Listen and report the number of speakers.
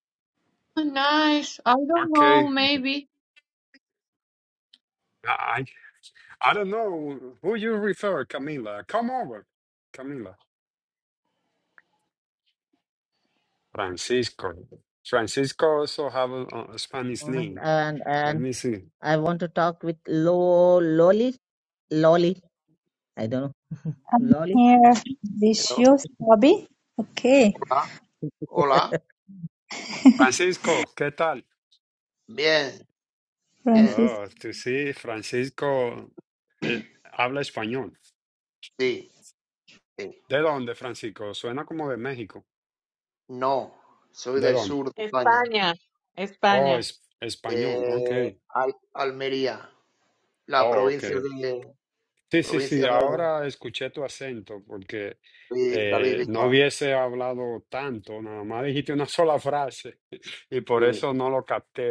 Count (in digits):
5